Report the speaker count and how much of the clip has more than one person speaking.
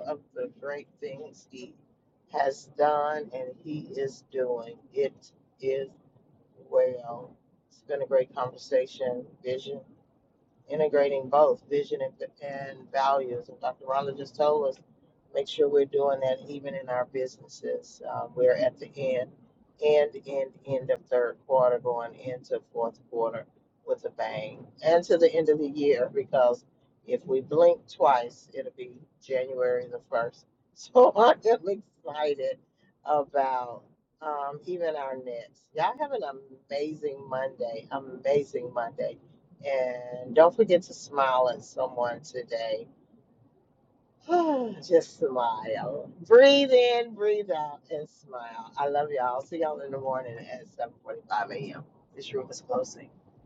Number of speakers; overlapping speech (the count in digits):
1, no overlap